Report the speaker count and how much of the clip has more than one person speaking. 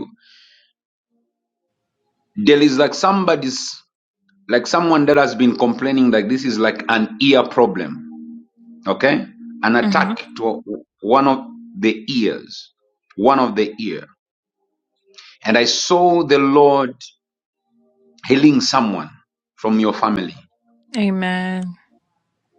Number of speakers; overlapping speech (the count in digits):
2, about 2%